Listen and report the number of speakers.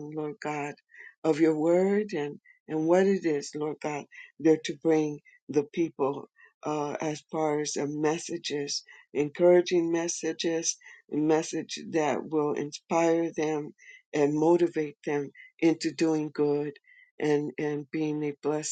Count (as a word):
one